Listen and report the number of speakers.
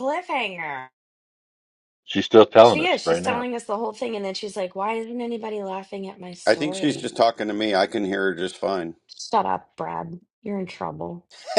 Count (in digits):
3